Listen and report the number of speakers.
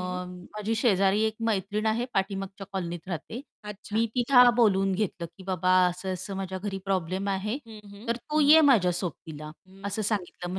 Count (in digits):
2